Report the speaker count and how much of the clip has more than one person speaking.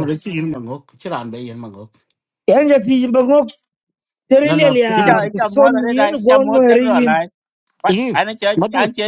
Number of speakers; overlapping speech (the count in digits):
3, about 36%